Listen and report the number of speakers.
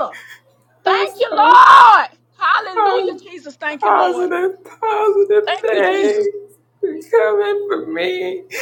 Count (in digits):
2